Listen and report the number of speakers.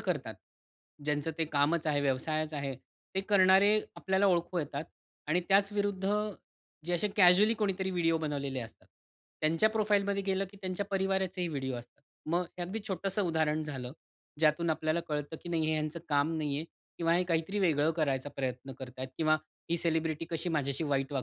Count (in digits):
1